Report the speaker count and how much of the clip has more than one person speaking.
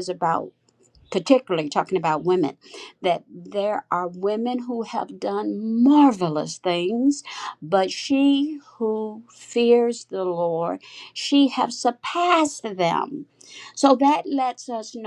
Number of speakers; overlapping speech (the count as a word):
one, no overlap